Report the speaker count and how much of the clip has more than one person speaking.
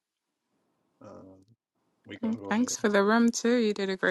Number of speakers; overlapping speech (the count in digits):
2, about 13%